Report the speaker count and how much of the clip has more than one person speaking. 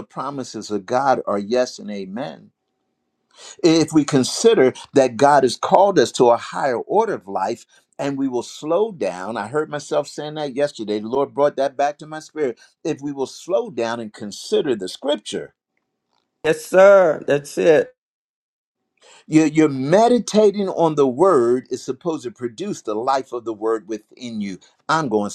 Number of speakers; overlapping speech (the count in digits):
2, no overlap